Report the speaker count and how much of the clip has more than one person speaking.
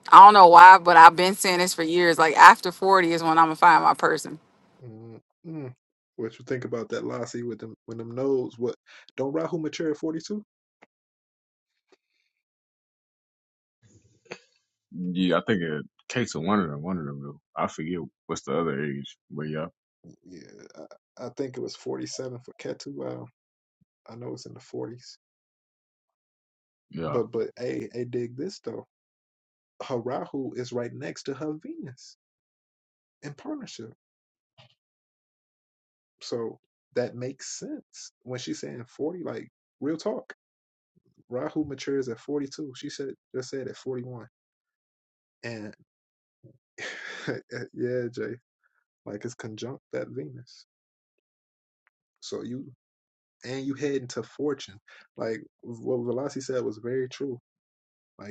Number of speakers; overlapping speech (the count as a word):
three, under 1%